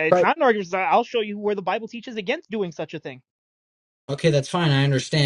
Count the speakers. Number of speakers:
2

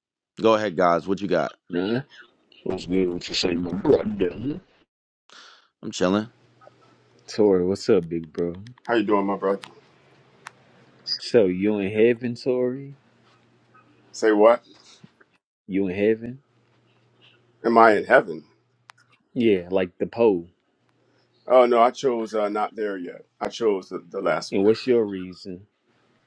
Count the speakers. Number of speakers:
3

